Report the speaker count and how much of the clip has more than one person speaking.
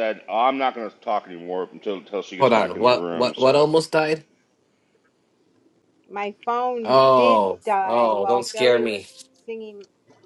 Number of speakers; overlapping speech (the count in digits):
3, about 34%